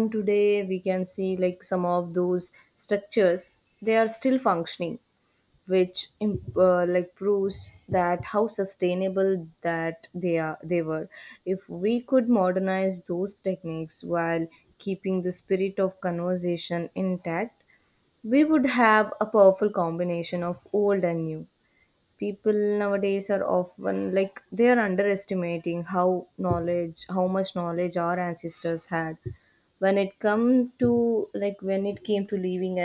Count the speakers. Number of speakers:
one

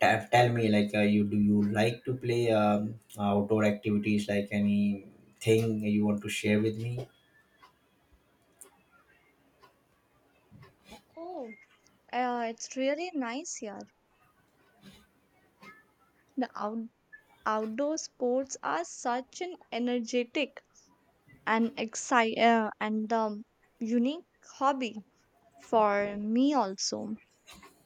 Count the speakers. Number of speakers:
two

